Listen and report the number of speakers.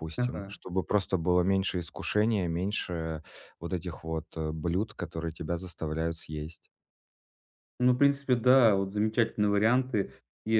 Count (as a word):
two